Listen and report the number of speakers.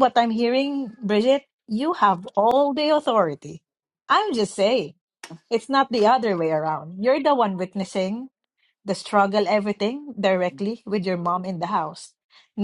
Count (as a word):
one